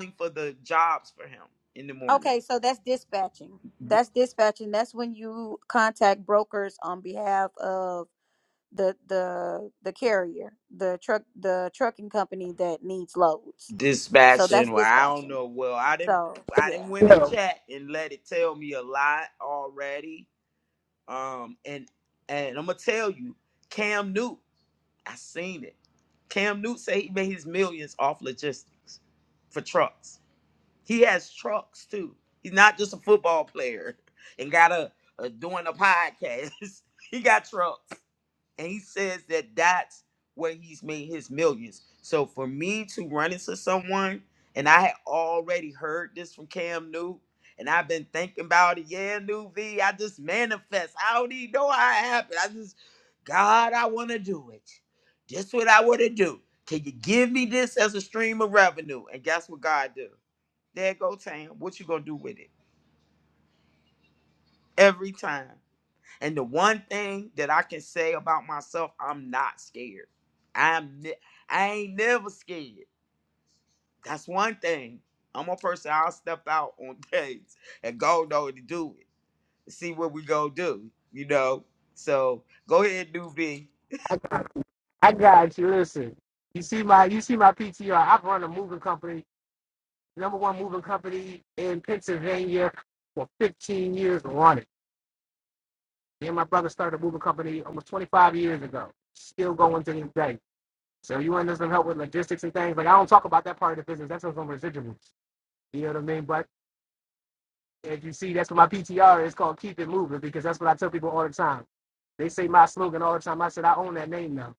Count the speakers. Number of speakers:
3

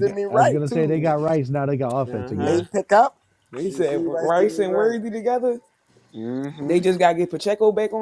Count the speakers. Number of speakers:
3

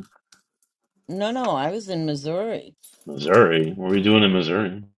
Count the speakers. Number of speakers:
2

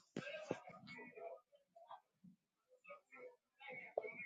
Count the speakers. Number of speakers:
0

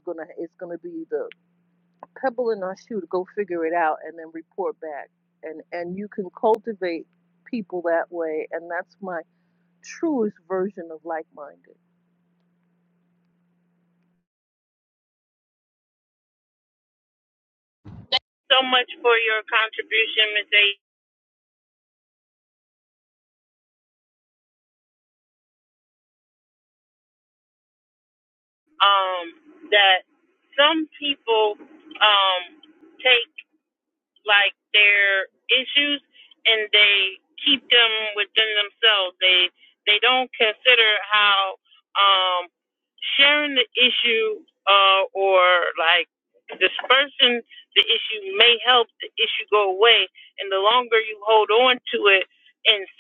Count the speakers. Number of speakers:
2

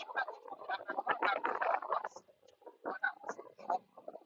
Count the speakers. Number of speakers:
0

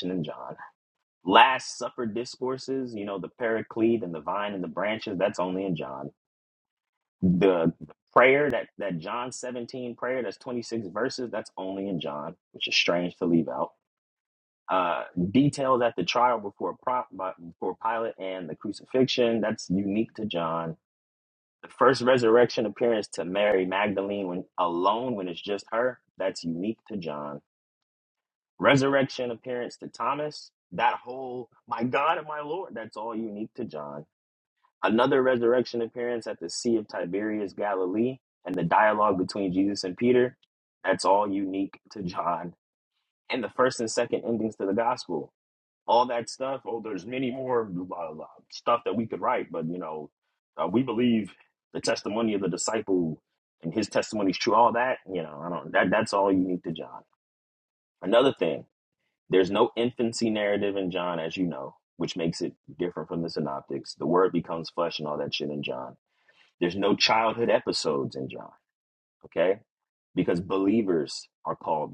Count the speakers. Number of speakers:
1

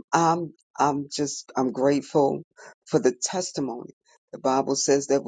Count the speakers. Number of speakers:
1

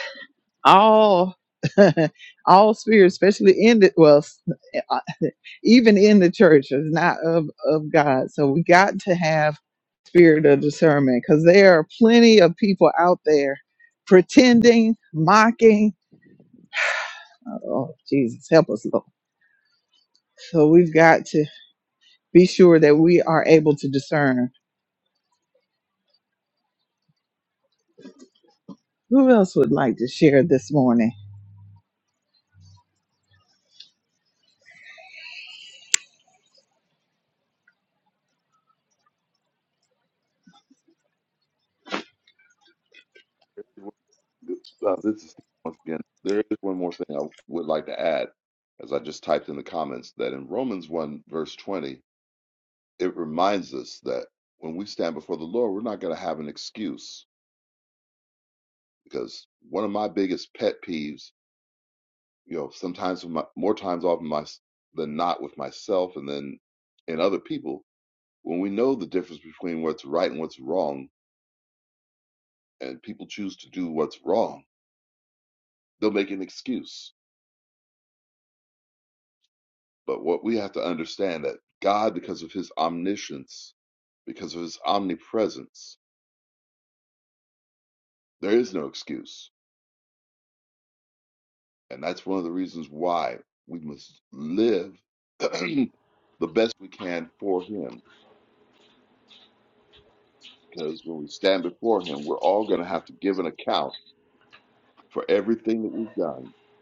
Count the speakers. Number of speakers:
2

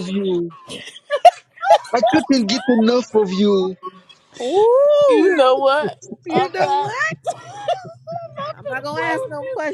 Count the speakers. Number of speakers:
3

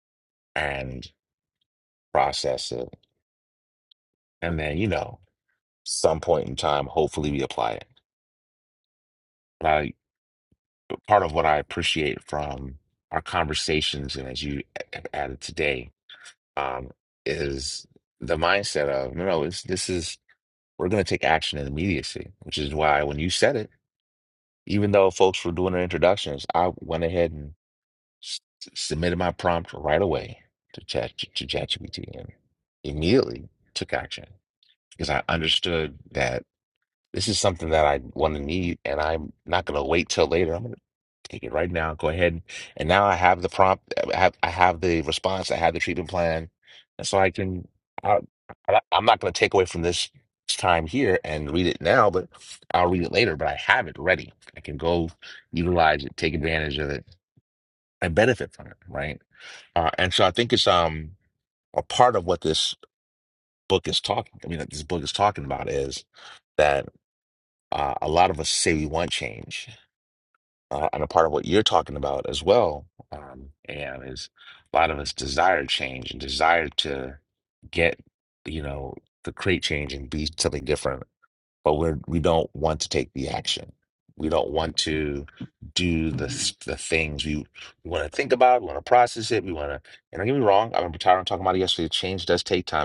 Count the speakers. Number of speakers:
1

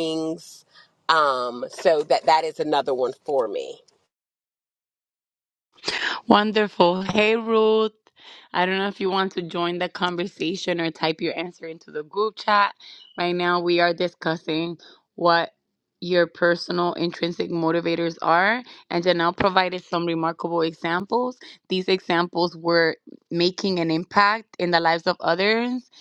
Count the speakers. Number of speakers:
2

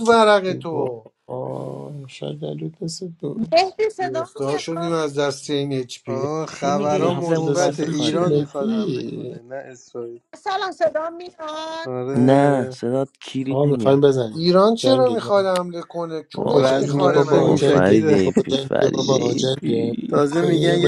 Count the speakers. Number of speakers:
5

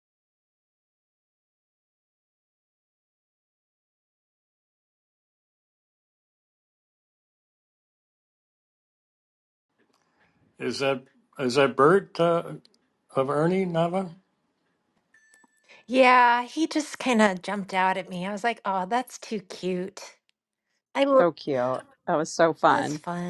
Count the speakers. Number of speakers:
3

